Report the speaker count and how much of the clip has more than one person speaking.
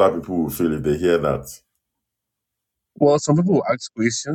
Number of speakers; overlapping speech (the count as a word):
two, no overlap